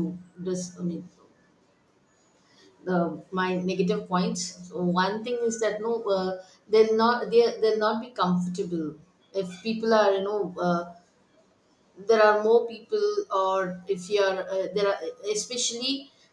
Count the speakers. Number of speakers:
one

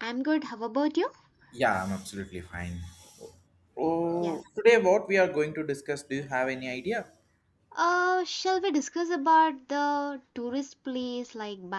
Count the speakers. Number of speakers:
two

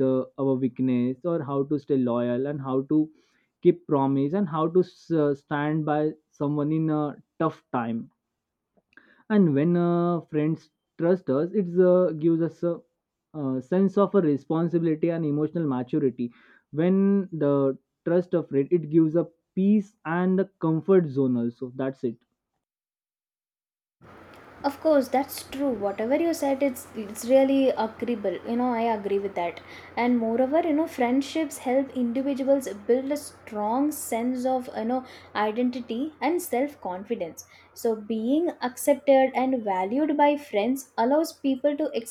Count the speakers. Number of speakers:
two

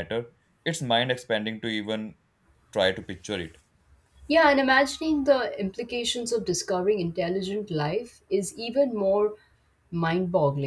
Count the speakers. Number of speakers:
two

